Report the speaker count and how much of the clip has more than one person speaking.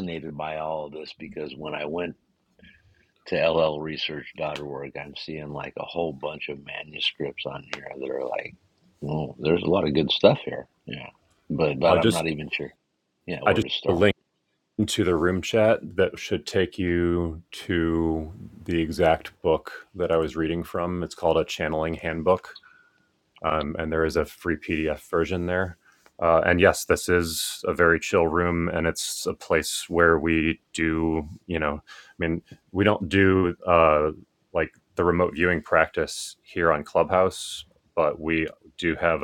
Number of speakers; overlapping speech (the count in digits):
2, about 2%